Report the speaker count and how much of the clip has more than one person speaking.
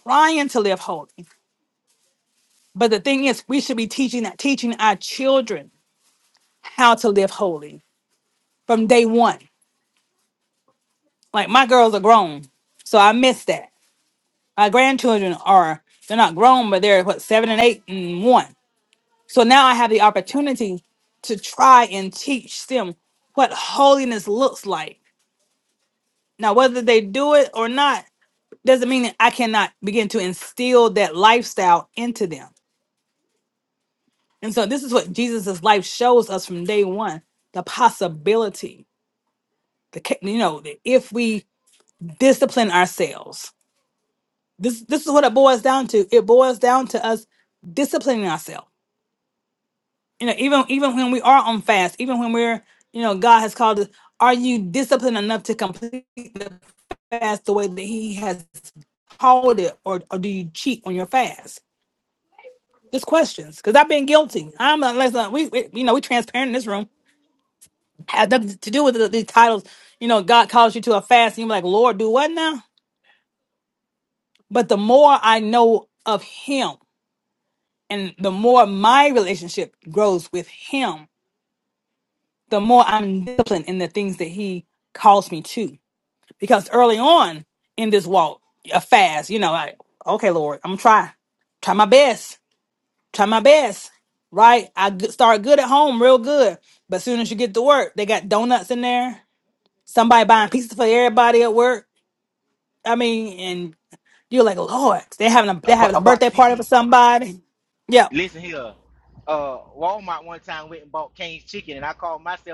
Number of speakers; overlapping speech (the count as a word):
two, about 1%